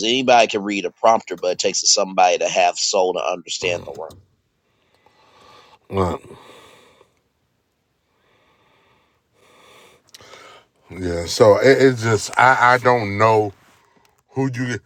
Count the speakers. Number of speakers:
two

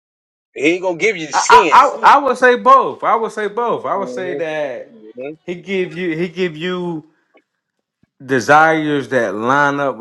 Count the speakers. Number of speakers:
two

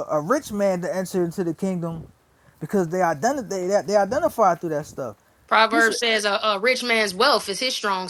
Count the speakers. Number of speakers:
two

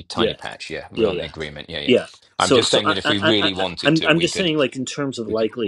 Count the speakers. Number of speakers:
two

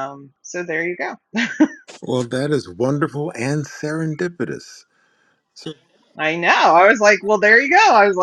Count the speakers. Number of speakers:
two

